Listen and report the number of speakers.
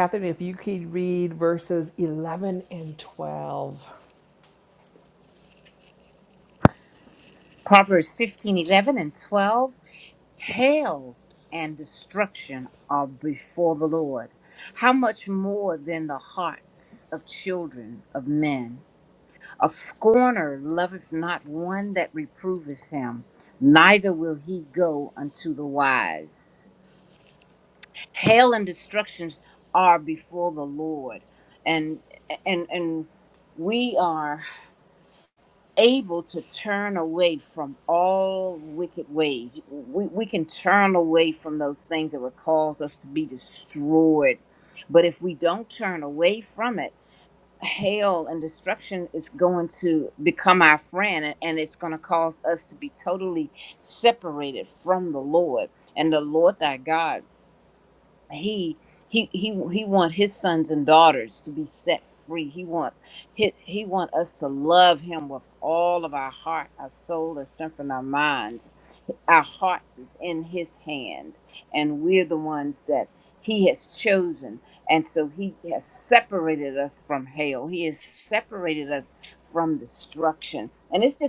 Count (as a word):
two